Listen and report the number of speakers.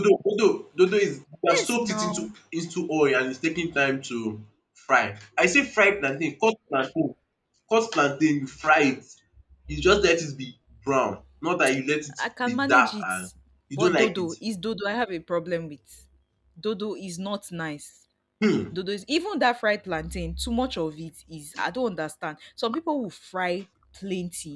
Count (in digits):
2